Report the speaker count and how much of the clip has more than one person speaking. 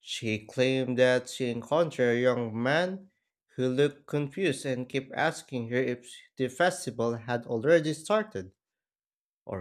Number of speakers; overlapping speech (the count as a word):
one, no overlap